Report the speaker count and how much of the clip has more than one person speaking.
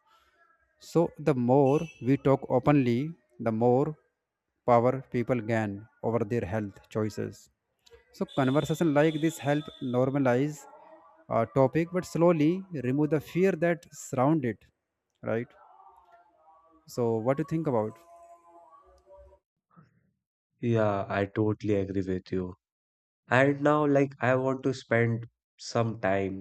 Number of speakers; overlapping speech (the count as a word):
two, no overlap